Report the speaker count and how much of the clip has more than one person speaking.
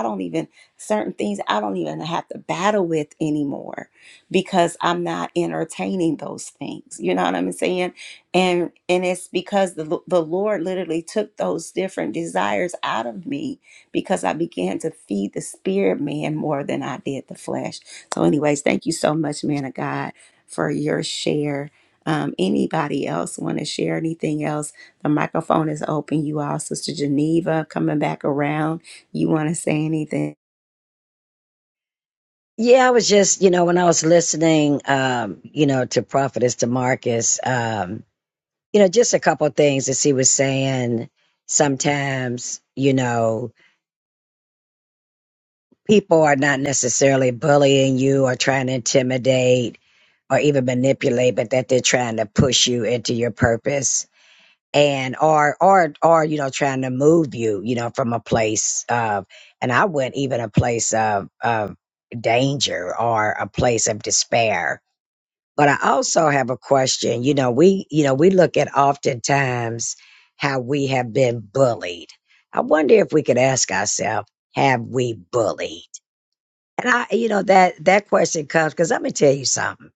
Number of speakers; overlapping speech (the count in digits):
2, no overlap